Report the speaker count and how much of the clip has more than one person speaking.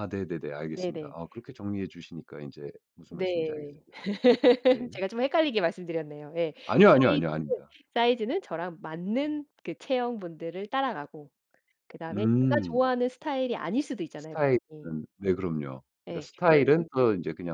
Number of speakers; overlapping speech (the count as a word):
two, about 19%